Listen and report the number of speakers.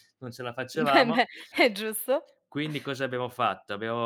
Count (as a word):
two